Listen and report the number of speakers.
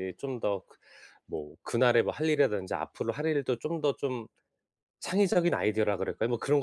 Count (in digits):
1